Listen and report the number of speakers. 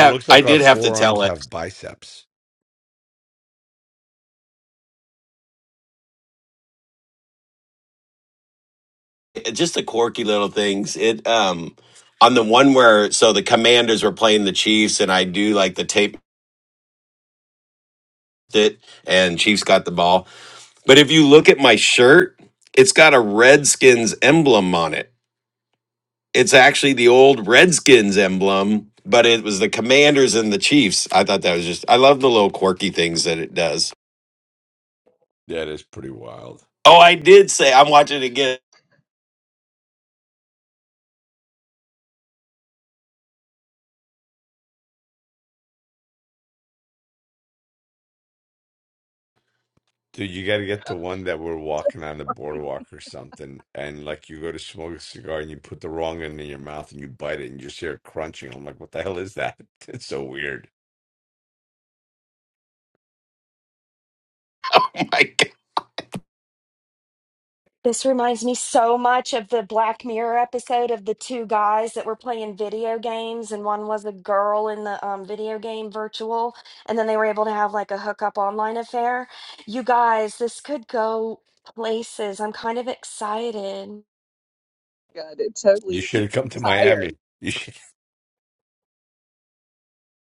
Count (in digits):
4